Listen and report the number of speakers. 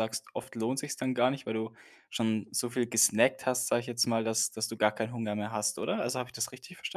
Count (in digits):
1